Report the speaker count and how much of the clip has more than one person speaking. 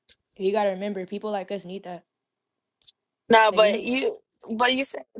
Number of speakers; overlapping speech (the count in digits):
2, about 5%